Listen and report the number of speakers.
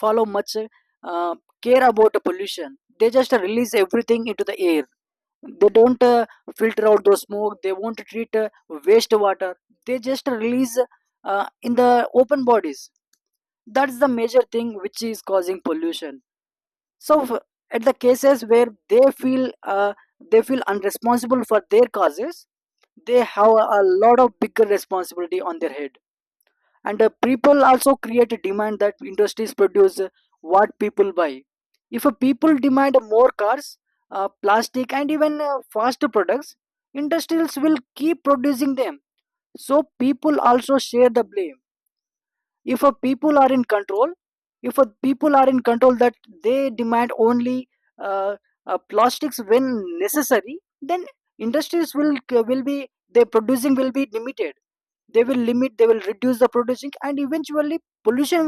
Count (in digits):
1